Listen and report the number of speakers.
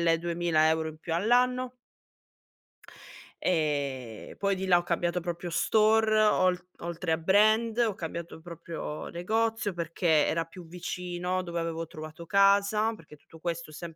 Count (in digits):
1